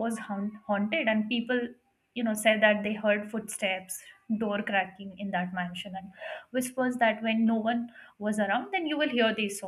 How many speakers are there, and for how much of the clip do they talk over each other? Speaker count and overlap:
one, no overlap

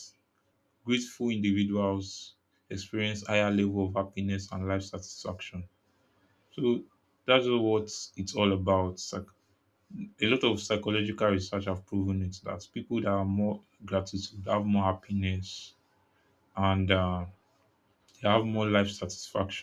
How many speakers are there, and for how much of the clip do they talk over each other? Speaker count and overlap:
one, no overlap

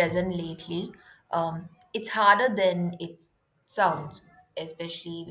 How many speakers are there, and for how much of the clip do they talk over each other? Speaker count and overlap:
one, no overlap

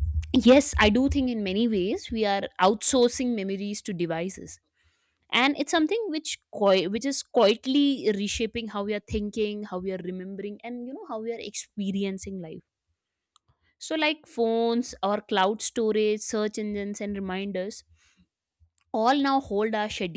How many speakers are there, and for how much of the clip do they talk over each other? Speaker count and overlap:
one, no overlap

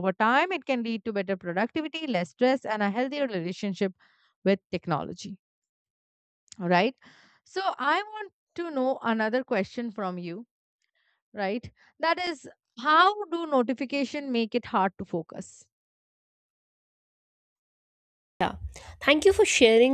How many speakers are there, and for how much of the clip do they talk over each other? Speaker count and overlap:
two, no overlap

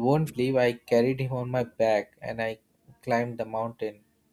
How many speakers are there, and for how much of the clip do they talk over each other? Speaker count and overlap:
one, no overlap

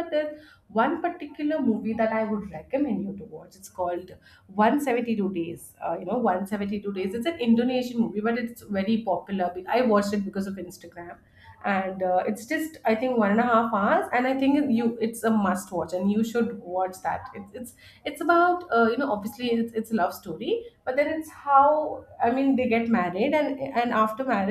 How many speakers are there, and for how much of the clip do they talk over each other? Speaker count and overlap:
one, no overlap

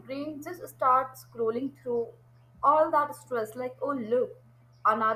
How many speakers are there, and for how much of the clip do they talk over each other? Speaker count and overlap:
one, no overlap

